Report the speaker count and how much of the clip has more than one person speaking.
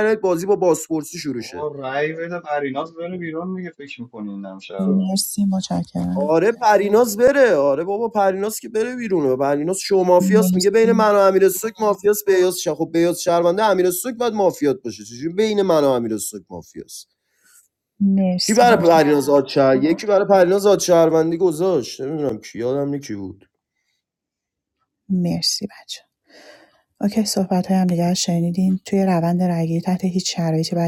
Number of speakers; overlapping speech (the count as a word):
three, about 7%